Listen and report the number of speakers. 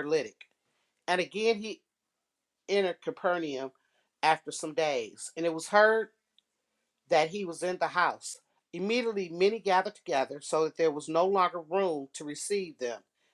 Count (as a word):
one